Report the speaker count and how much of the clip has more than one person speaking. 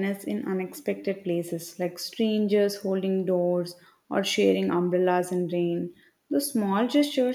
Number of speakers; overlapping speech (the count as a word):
one, no overlap